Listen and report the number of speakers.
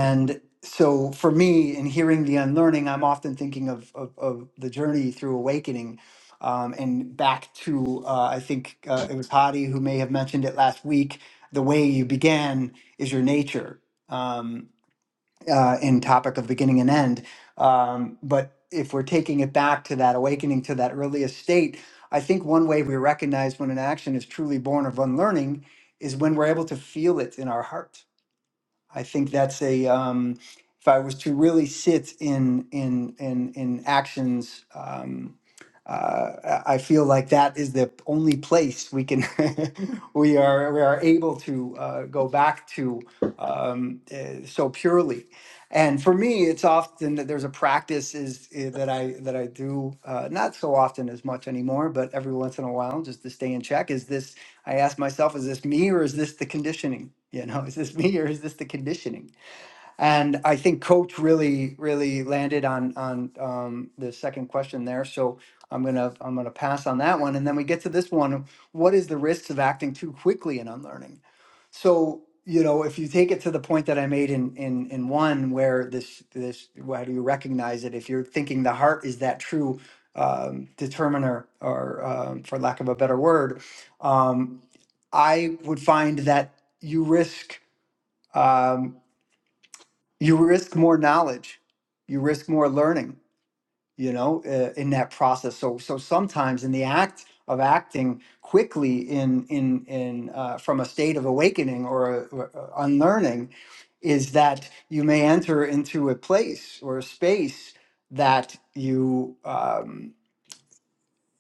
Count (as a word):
one